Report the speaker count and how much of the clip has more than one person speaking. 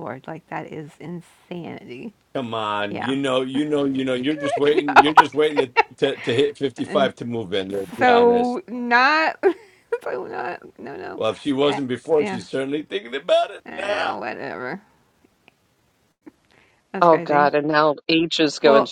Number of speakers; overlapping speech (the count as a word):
three, about 17%